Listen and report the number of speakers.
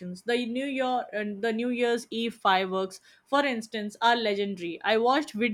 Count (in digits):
1